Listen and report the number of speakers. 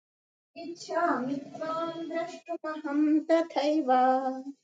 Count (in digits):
1